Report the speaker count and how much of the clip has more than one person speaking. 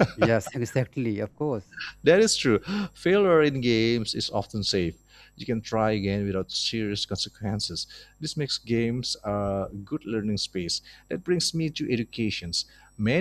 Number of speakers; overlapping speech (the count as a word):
two, no overlap